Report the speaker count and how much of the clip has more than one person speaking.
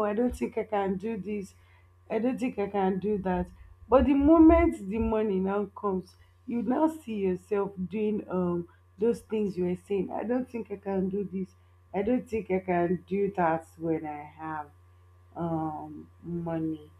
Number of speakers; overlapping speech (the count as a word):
one, no overlap